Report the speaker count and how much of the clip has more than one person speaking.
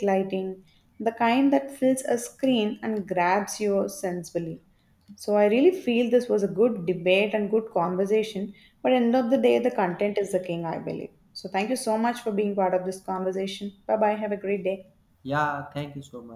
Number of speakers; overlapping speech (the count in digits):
2, no overlap